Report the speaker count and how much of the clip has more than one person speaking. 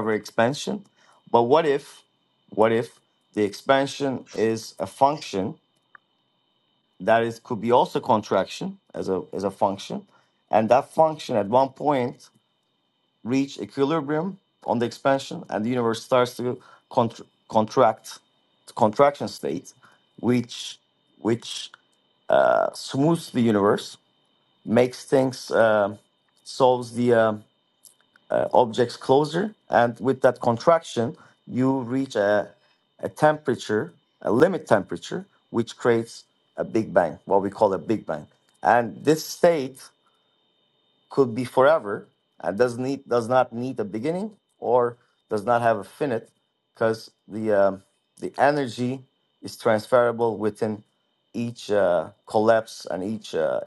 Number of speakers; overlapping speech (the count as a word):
one, no overlap